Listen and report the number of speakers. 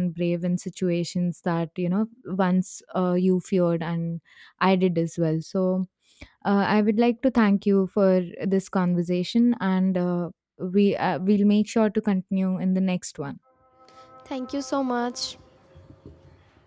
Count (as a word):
two